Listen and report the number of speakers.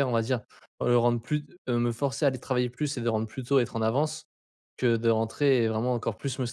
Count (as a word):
one